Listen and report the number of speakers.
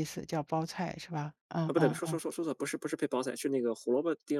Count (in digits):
2